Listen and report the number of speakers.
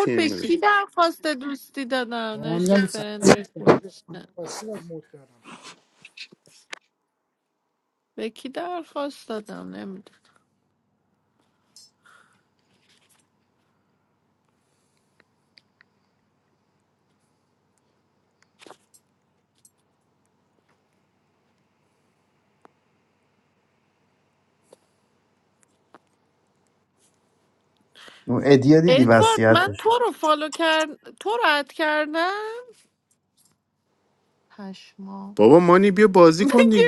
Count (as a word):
four